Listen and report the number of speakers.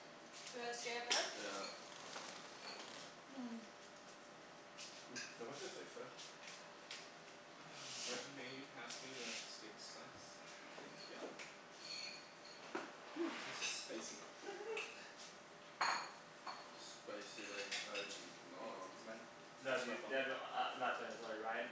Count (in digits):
4